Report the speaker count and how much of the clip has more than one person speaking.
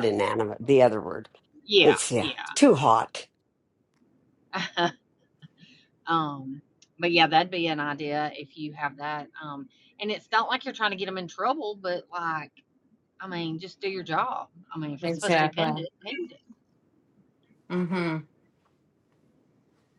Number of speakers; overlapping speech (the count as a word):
three, about 8%